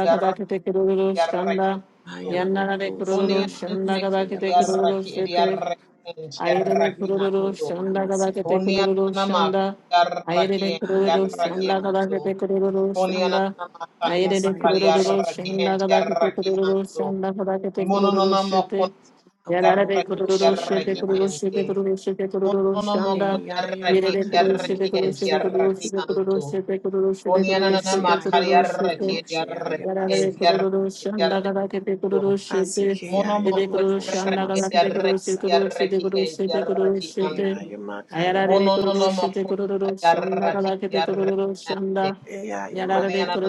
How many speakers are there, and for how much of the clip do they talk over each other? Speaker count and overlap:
three, about 76%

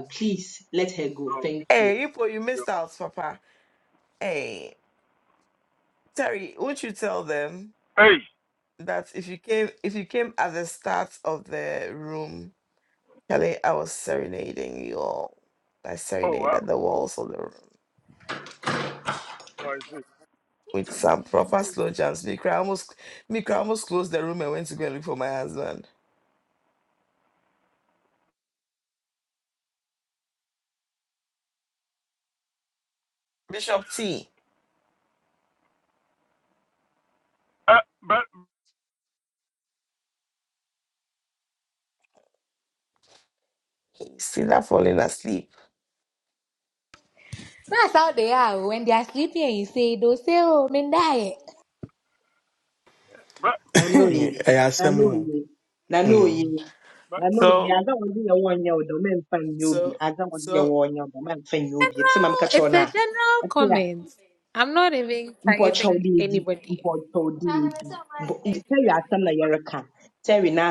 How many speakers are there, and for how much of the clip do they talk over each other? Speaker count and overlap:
five, about 9%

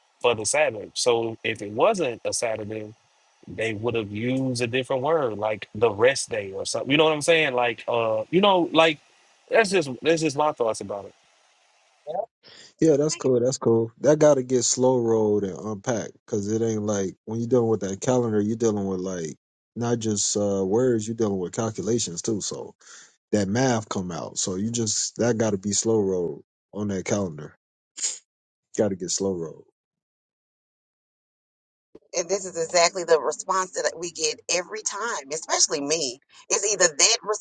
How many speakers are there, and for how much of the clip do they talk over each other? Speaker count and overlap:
three, under 1%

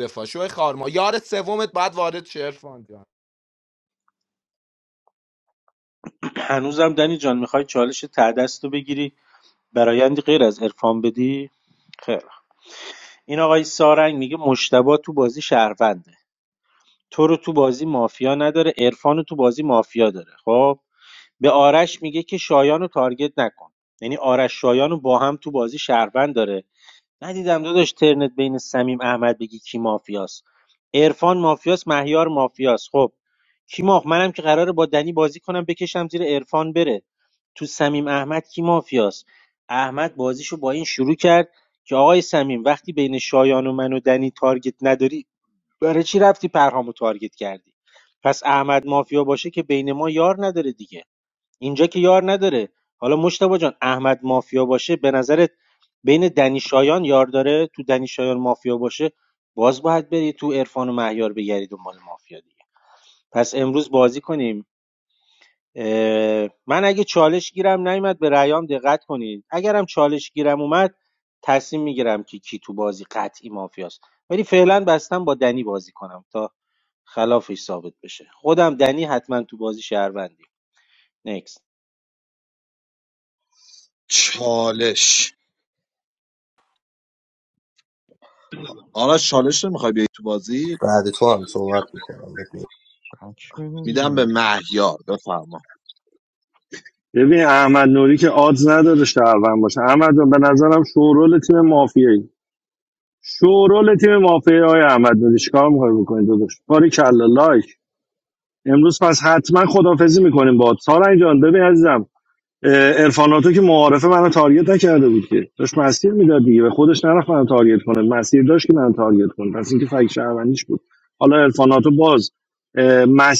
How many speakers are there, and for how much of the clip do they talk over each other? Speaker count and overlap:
six, under 1%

